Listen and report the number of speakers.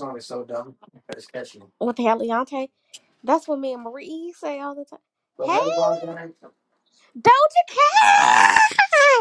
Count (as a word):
two